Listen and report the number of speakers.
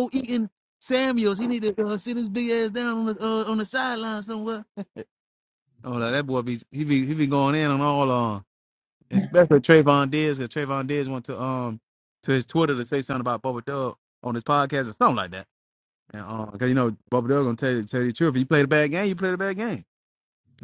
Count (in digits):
1